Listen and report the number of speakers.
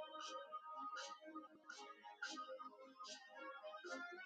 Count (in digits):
0